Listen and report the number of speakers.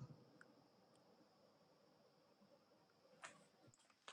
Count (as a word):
zero